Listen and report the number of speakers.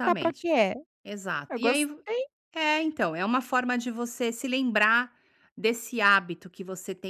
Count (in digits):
2